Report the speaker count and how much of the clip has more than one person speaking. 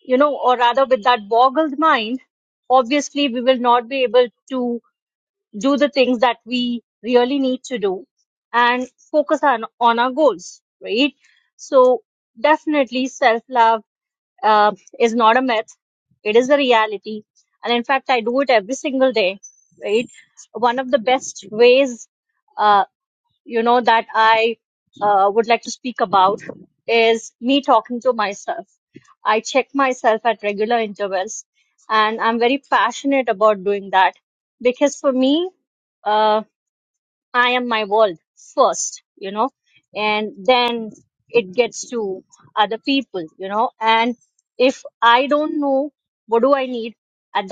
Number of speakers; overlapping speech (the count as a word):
one, no overlap